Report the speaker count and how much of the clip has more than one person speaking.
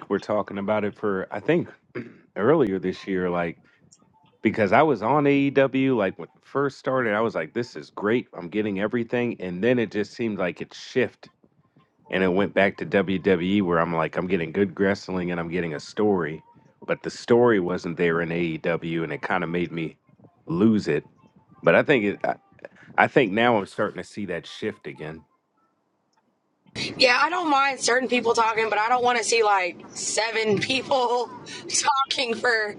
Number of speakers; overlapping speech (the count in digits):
2, no overlap